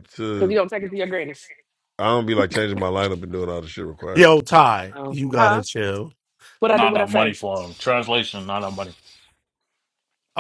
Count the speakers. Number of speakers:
4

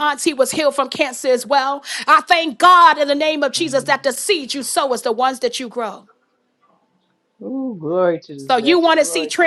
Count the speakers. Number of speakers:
2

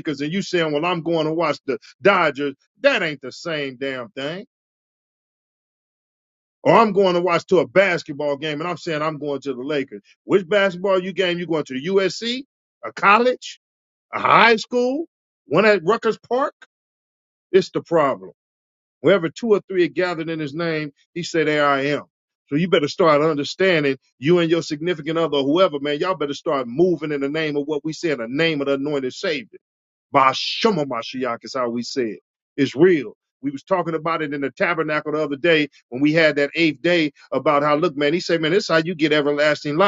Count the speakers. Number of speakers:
1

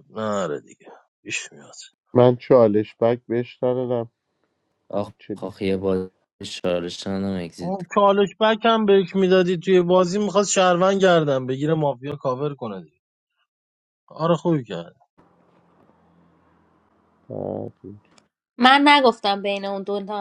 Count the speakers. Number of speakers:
4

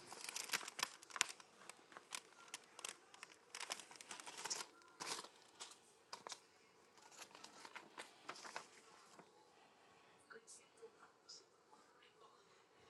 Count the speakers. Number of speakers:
0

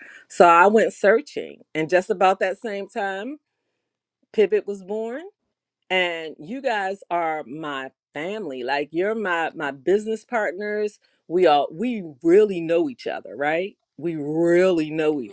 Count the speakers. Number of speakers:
1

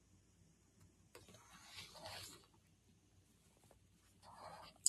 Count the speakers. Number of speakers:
0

